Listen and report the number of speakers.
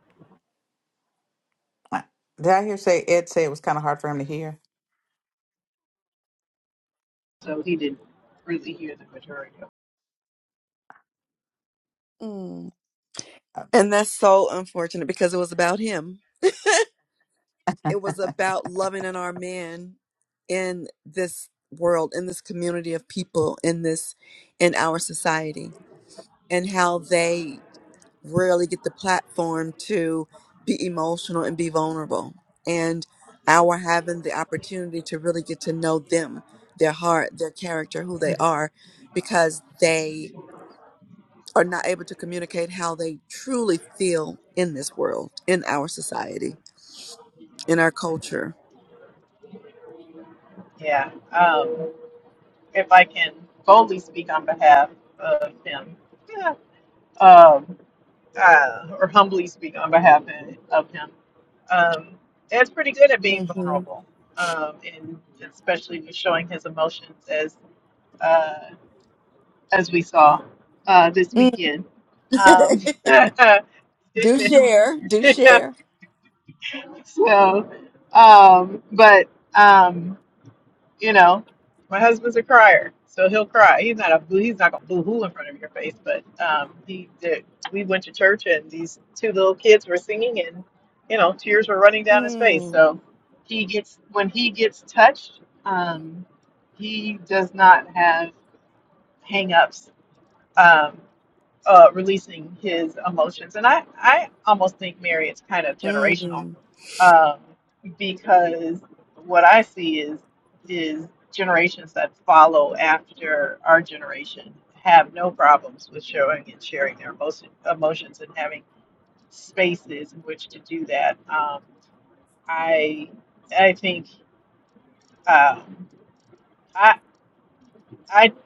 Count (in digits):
3